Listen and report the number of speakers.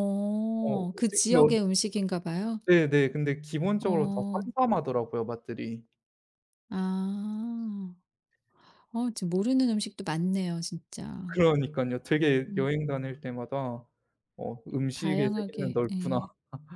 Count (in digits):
2